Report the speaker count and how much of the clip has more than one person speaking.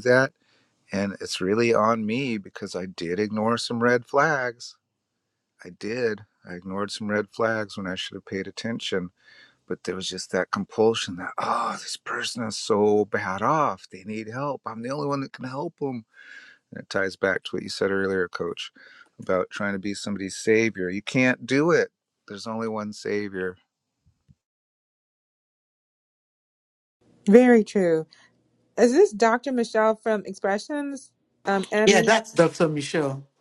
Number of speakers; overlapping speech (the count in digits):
3, about 1%